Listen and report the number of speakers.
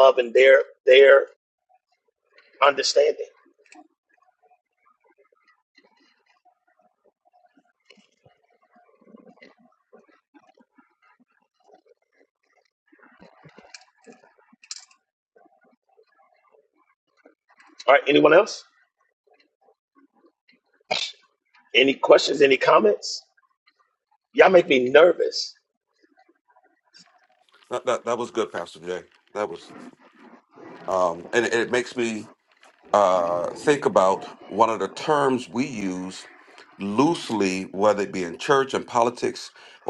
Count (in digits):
2